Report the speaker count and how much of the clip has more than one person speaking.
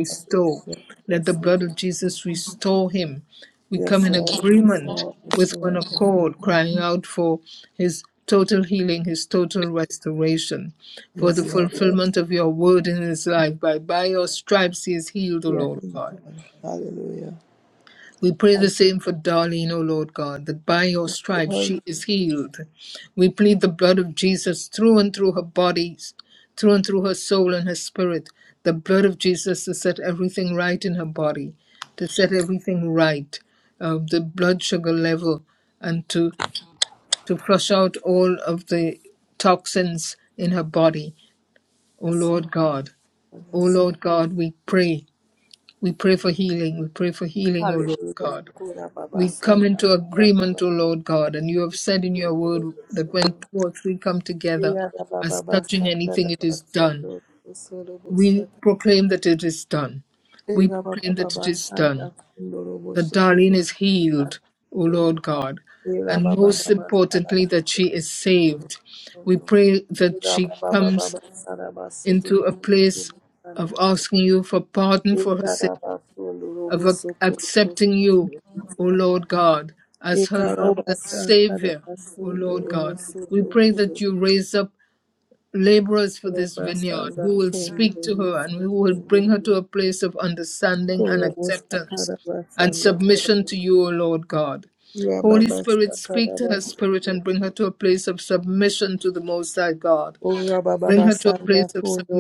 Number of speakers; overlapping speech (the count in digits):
2, about 29%